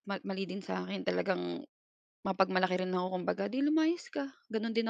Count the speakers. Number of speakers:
1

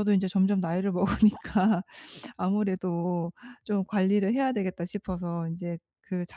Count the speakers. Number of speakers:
1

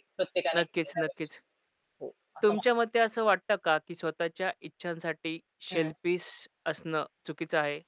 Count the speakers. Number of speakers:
2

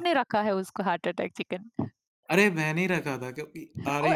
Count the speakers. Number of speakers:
2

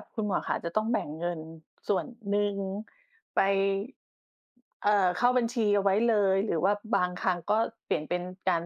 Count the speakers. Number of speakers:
1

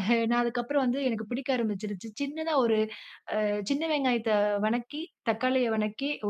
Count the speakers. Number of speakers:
1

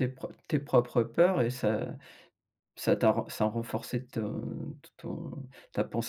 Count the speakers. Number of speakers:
1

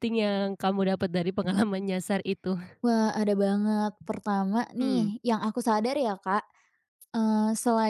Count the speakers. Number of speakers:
2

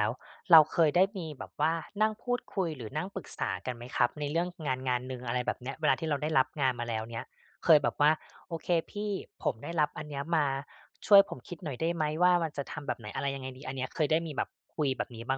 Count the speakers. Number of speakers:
1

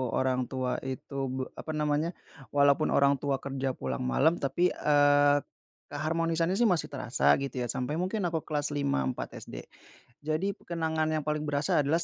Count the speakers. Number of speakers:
1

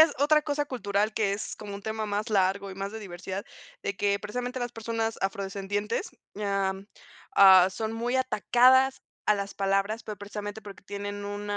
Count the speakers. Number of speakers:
1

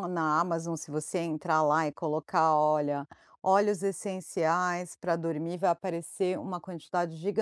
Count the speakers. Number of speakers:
1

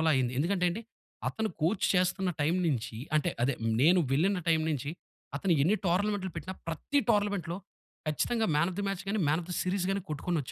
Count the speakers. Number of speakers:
1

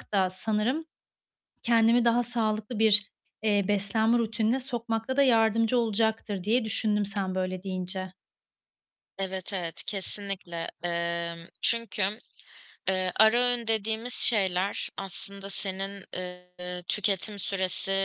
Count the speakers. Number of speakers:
2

